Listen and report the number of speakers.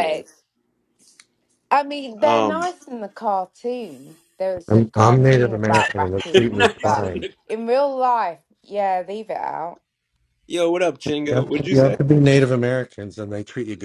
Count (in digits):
3